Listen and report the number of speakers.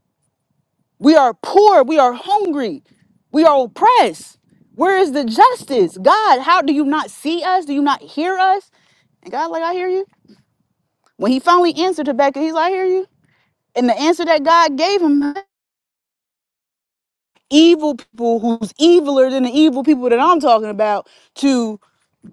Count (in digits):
1